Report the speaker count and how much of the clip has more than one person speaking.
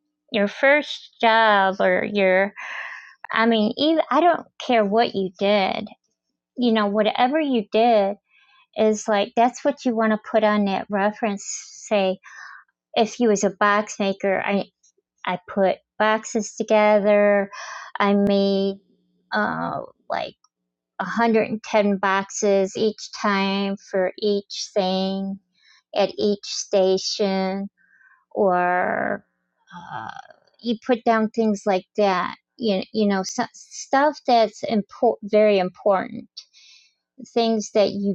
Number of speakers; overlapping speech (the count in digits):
1, no overlap